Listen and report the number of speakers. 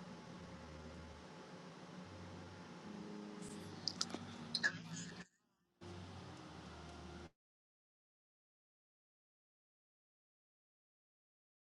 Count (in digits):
0